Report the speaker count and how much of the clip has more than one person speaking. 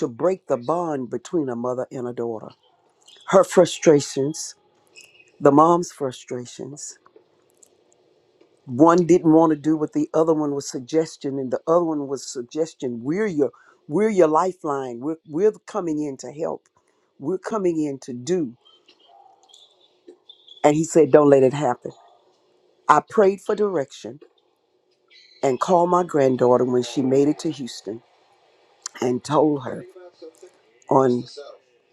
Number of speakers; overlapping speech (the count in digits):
1, no overlap